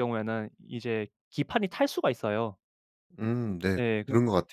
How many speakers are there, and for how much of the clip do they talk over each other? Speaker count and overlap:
two, about 9%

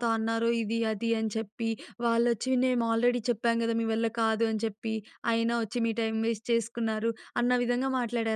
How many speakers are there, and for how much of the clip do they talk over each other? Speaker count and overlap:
one, no overlap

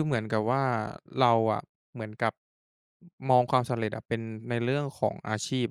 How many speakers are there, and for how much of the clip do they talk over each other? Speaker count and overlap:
one, no overlap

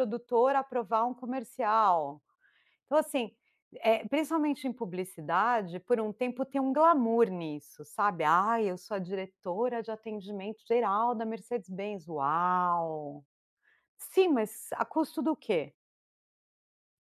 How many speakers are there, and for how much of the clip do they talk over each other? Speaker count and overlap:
one, no overlap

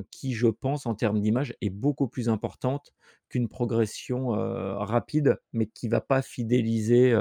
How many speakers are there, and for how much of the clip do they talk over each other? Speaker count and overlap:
one, no overlap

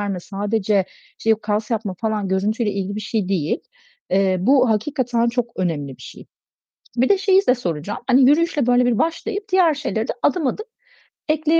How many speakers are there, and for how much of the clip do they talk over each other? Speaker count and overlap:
one, no overlap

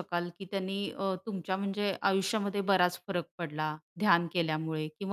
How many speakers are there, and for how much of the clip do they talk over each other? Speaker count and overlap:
one, no overlap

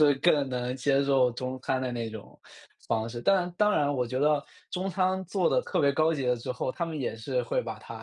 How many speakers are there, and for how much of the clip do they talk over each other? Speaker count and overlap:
one, no overlap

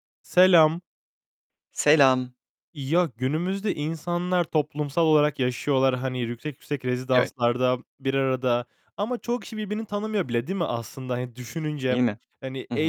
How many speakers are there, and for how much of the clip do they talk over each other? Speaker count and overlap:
two, about 4%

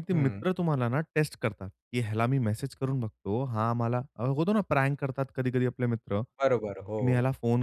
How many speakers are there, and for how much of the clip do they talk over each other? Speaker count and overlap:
two, about 8%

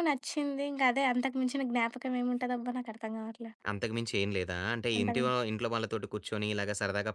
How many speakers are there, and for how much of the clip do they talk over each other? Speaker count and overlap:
two, about 4%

